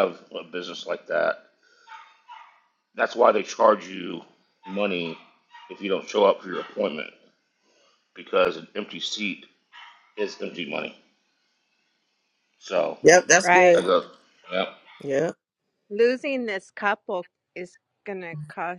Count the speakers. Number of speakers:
3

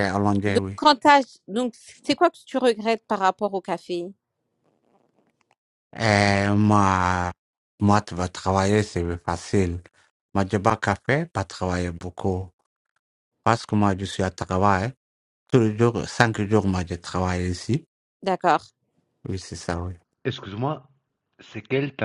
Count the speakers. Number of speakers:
3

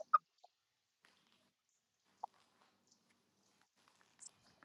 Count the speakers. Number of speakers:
0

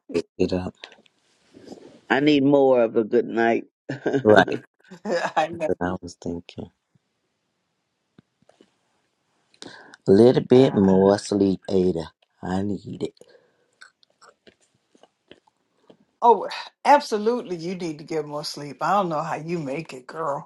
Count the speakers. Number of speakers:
3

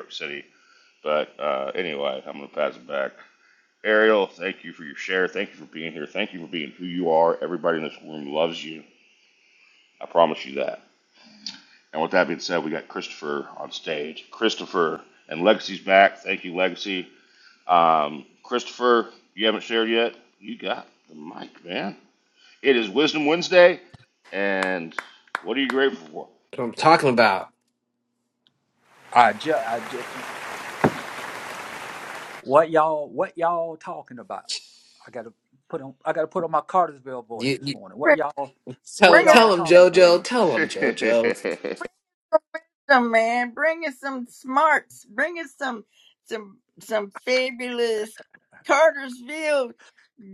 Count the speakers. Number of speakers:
4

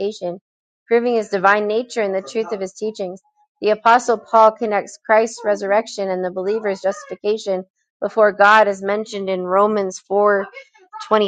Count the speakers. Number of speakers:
1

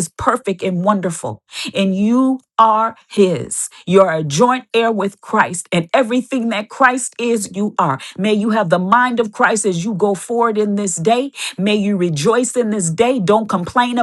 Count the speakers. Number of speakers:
1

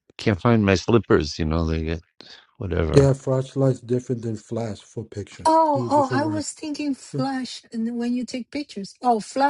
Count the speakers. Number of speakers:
3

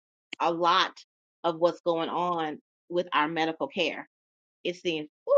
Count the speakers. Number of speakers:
1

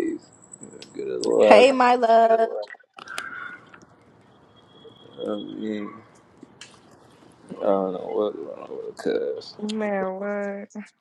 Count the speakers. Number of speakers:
3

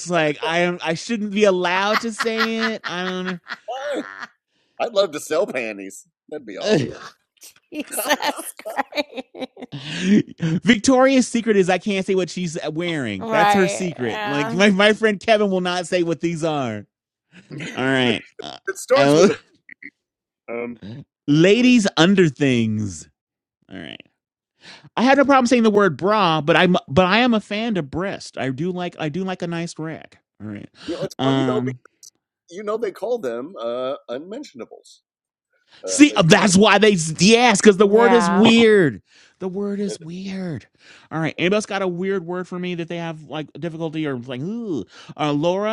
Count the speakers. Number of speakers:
3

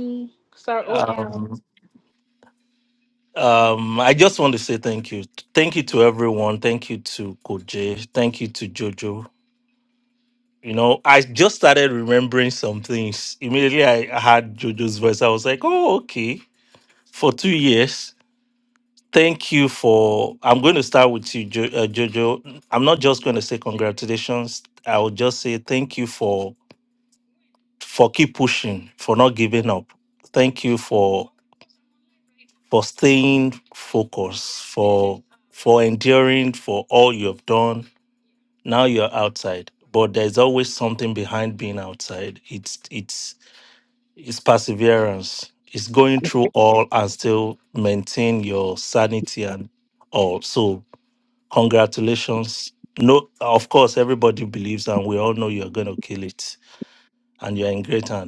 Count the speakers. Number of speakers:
2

